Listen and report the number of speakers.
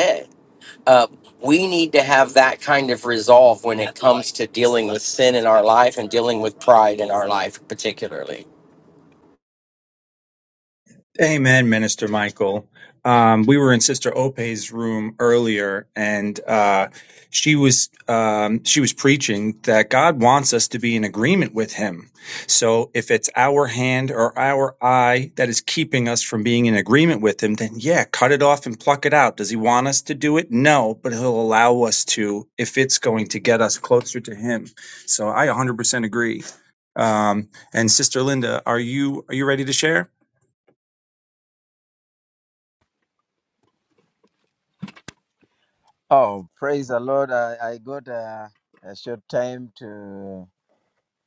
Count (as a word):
three